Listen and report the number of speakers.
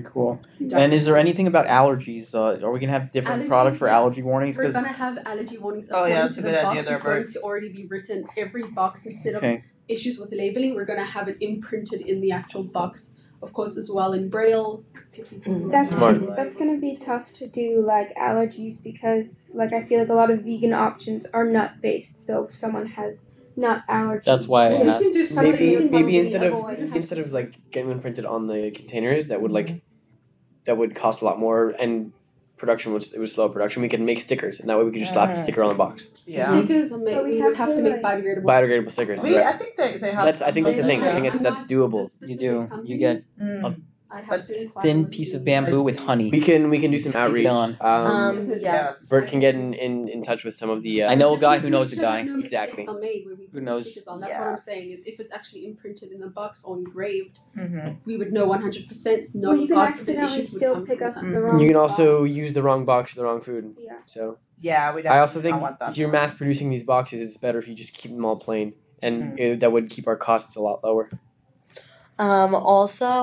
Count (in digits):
6